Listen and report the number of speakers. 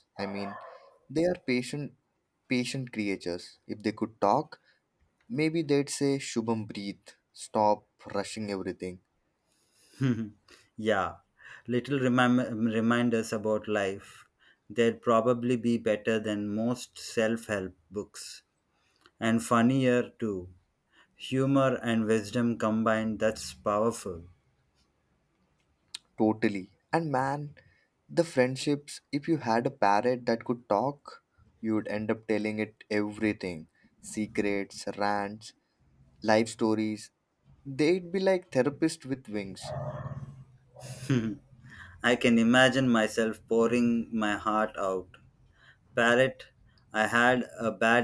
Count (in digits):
2